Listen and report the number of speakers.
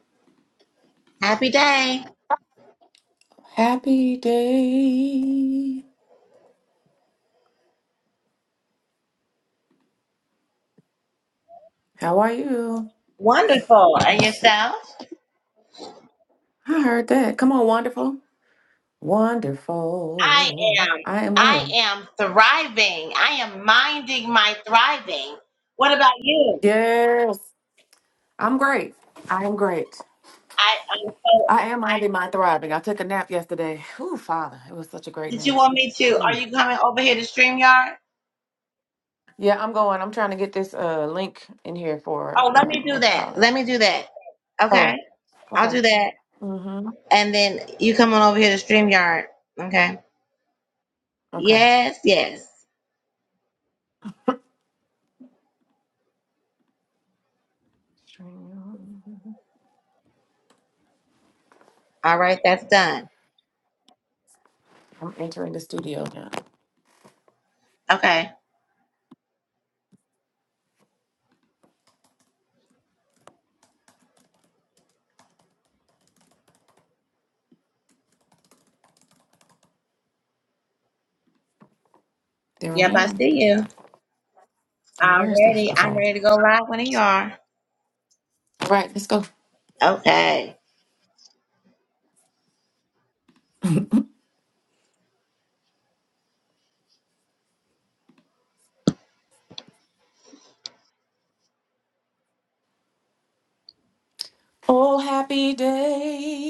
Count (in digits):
2